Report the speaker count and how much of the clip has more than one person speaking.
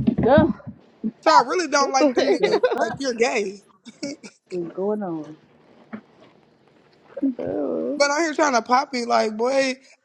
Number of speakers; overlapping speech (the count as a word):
three, about 8%